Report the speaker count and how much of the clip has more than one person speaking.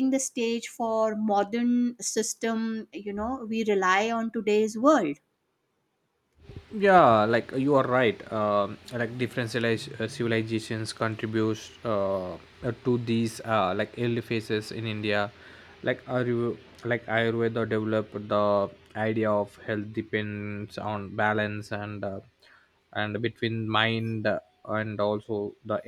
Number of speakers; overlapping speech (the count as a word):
two, no overlap